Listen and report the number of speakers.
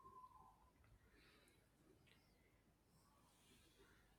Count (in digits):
0